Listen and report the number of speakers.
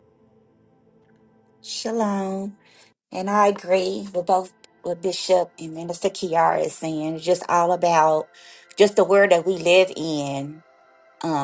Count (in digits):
1